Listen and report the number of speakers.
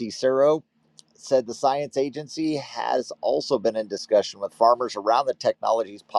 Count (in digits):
1